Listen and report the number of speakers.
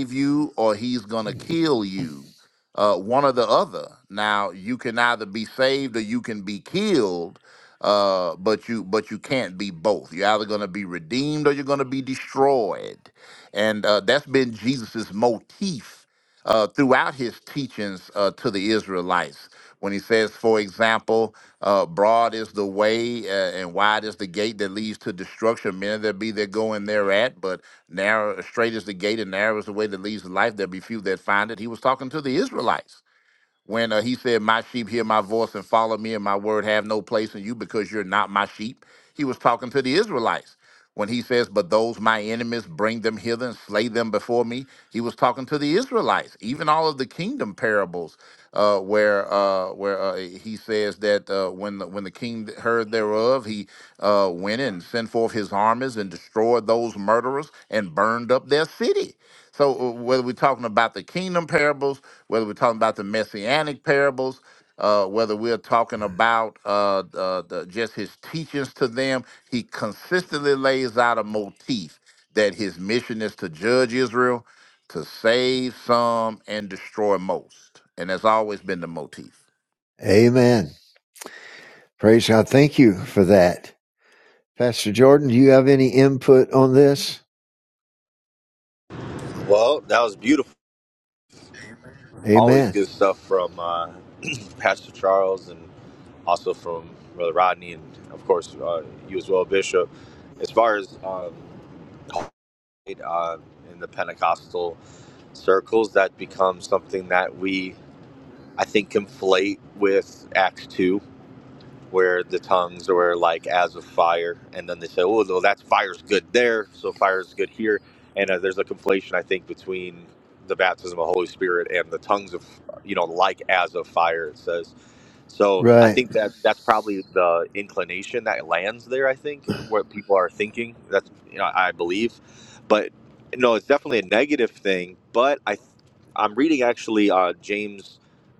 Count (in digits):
3